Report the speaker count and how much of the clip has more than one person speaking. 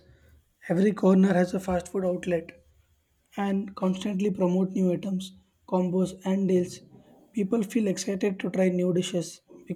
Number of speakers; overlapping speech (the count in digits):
1, no overlap